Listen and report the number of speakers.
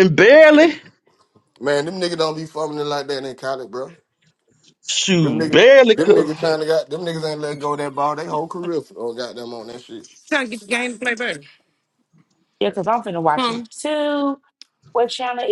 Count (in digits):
4